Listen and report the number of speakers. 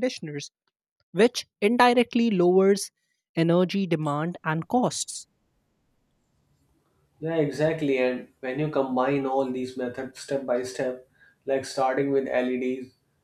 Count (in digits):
2